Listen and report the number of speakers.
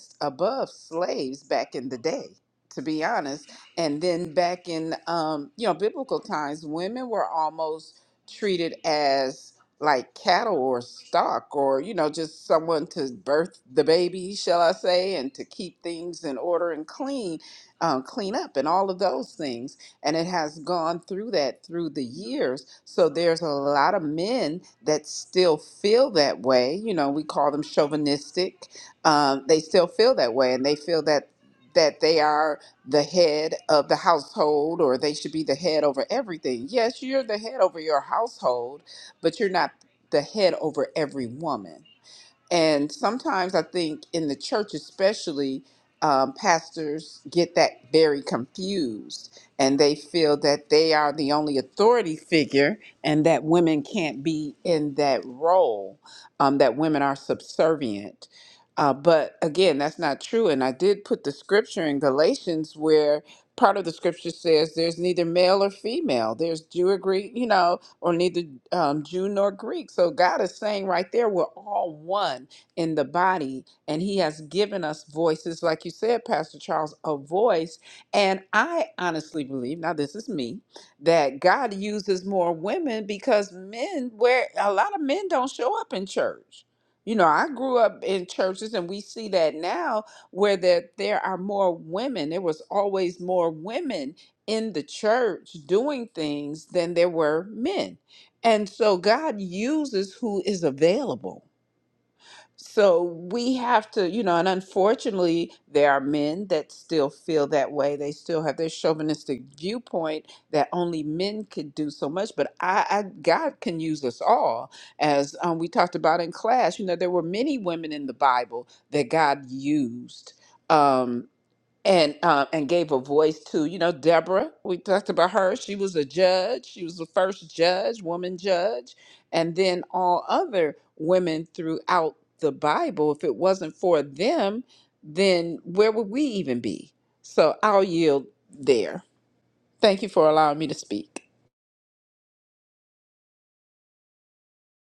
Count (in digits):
1